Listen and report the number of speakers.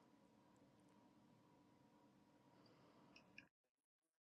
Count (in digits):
0